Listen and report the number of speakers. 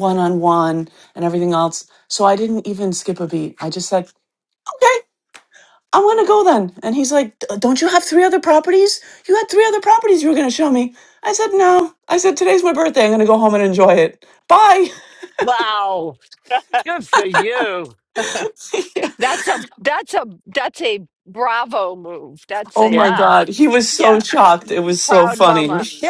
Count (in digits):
3